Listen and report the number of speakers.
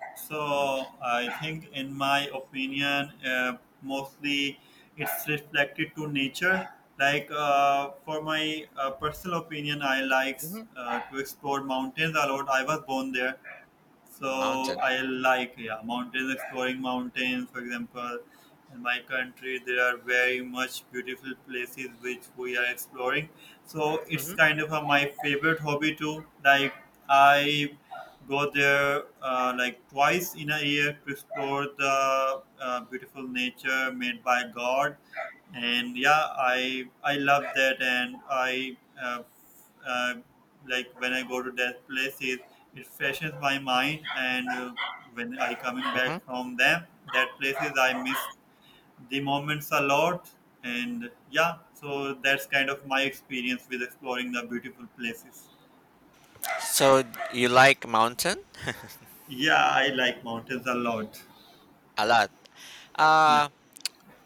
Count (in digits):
2